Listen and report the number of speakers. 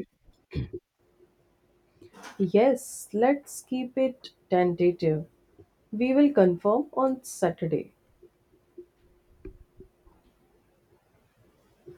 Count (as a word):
one